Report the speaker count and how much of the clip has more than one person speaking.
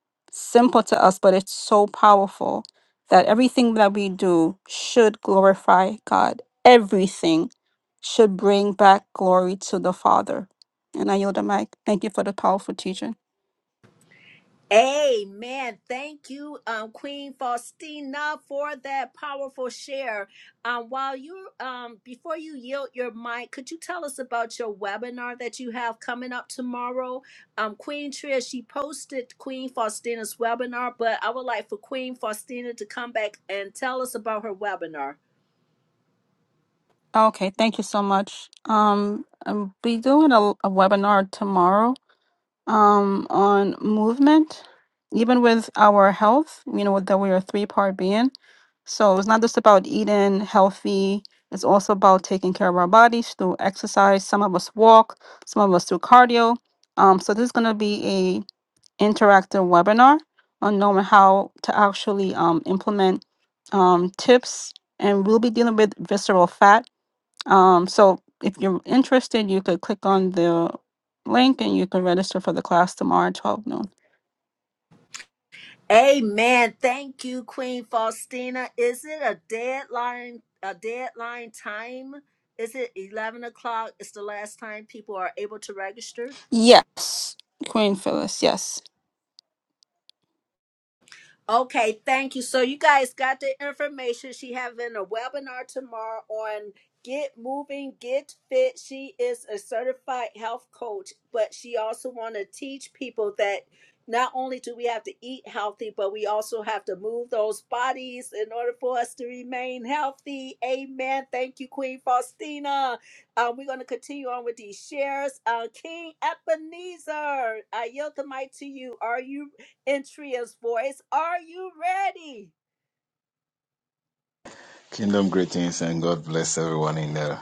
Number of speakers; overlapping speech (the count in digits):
3, no overlap